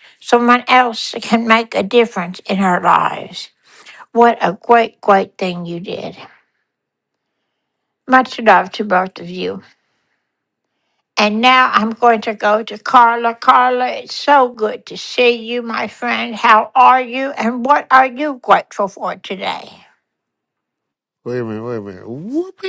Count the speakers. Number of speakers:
two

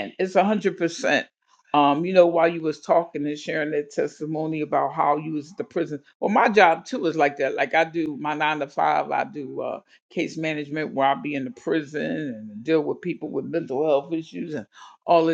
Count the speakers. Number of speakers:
one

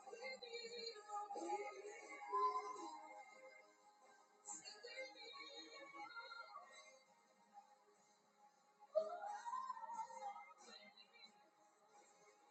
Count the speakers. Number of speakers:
zero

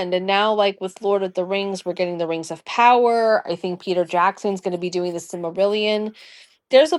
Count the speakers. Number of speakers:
one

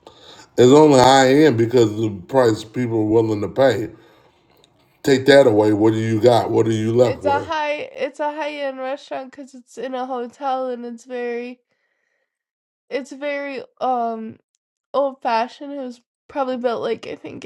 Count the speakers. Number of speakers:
two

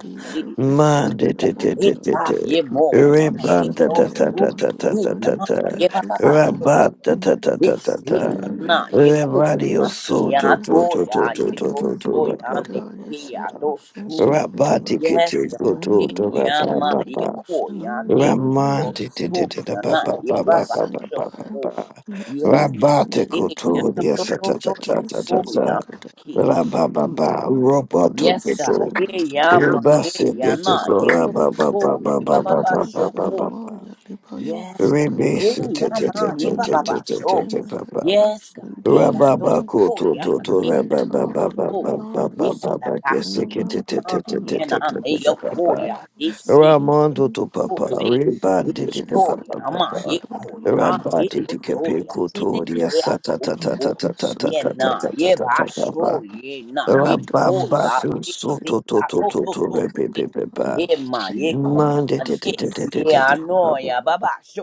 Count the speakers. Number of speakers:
three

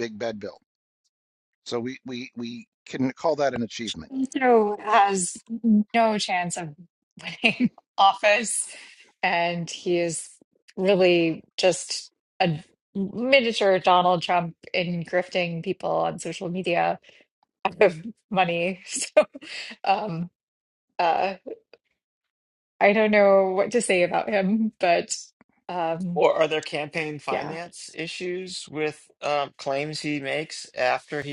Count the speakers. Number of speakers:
three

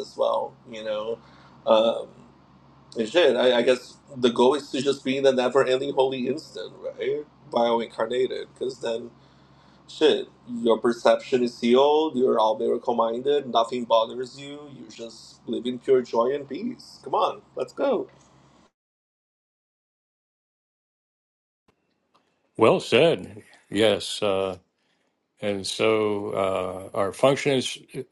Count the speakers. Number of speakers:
two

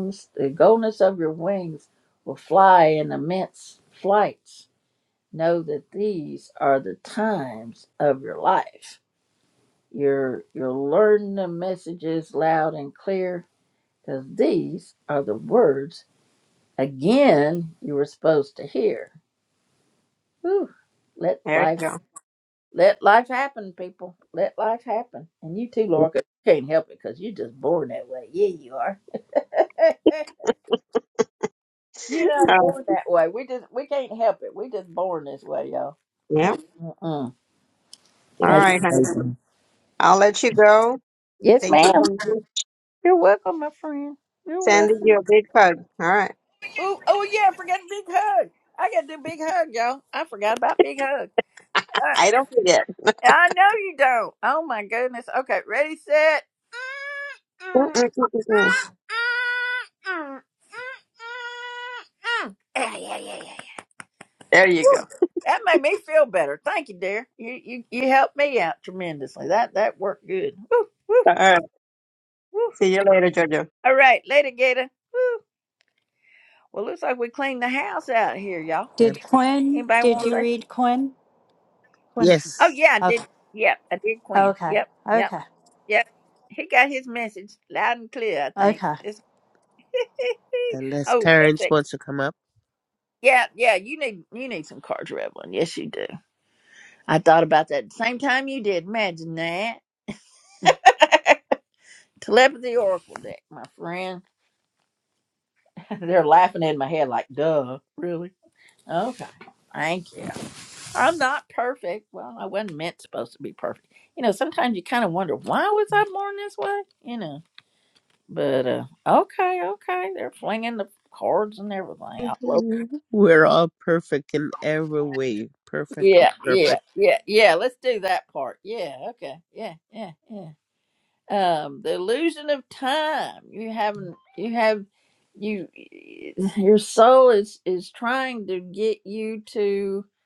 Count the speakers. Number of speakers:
four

